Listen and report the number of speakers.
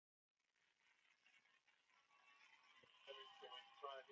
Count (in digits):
0